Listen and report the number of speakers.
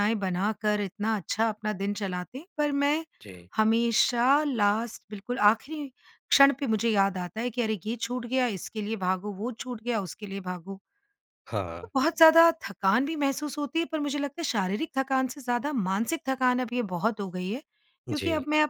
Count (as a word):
two